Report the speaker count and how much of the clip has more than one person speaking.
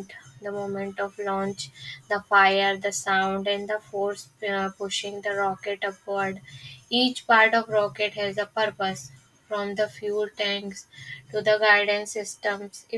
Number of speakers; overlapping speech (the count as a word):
one, no overlap